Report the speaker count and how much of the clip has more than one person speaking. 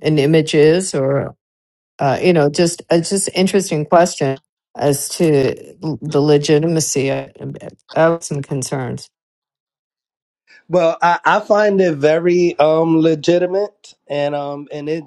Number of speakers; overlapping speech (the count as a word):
two, no overlap